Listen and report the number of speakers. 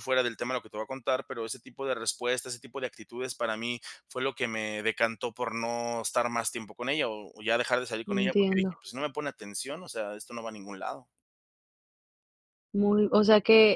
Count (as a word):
two